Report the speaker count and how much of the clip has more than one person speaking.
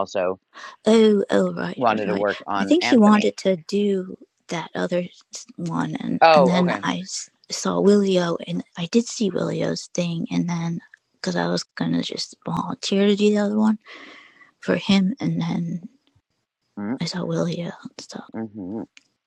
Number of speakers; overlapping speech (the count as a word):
two, about 11%